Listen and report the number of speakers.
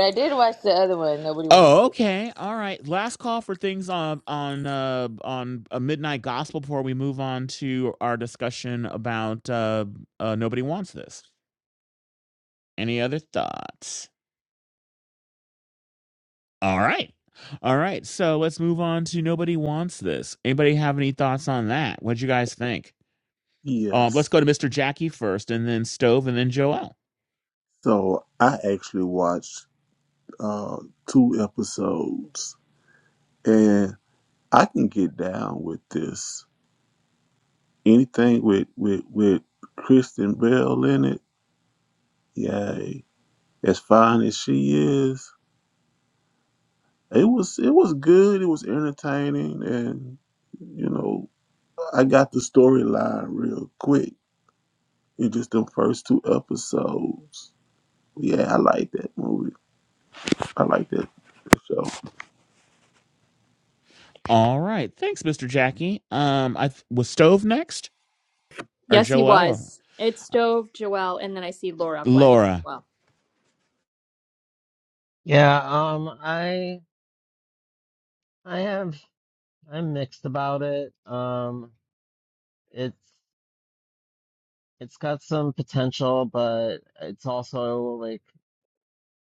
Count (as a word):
five